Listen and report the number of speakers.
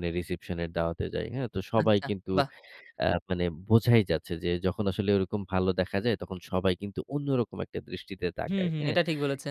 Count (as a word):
two